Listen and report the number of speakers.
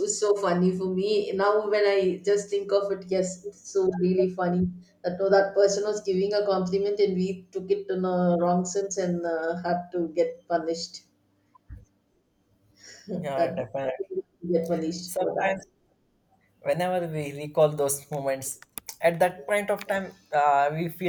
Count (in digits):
2